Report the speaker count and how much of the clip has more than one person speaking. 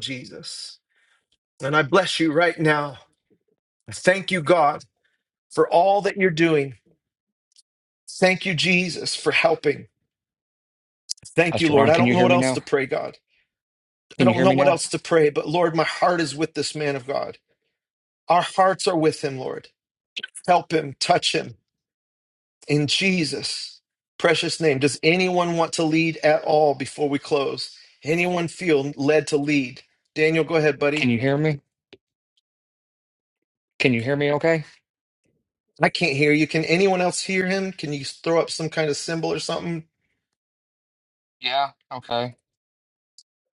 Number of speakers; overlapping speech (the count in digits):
2, about 4%